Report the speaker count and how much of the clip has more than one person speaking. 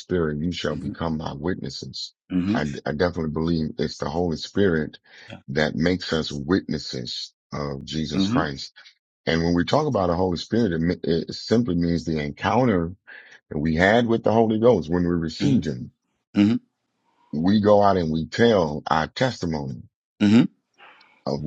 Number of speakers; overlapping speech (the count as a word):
two, about 3%